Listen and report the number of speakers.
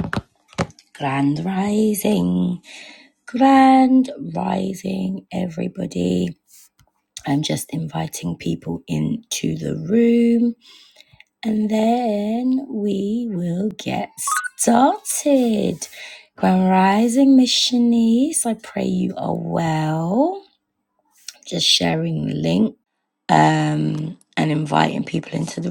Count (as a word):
one